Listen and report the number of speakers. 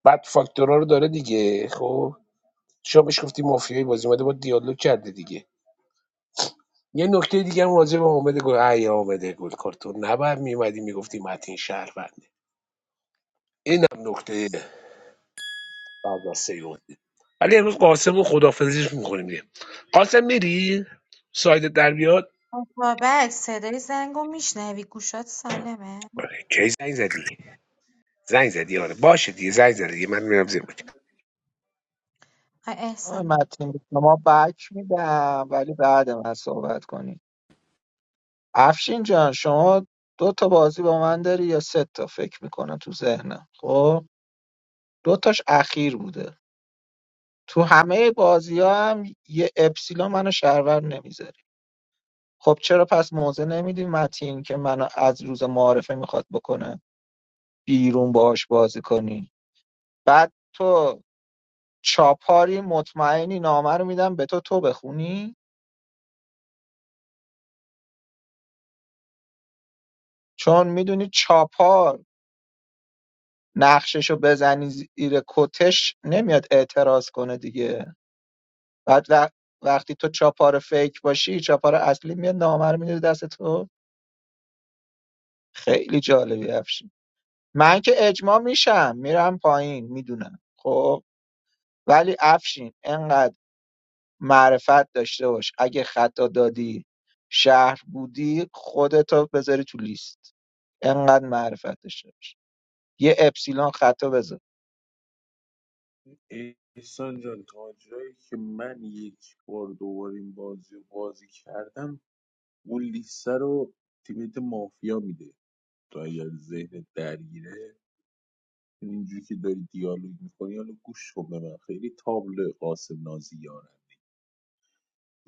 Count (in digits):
4